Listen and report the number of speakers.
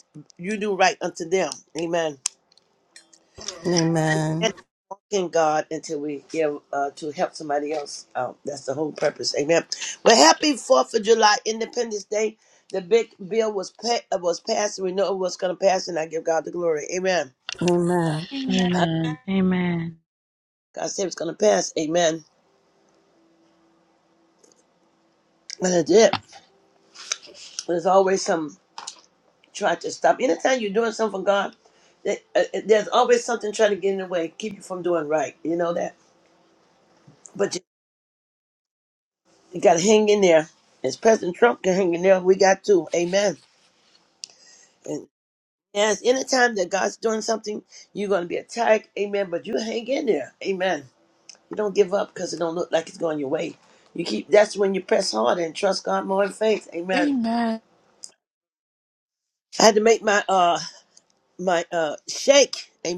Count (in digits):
4